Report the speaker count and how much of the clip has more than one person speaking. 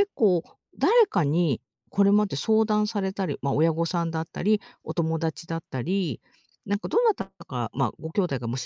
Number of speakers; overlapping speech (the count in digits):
1, no overlap